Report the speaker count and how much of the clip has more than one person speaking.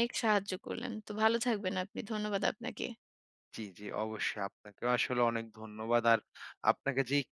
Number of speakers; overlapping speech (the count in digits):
2, no overlap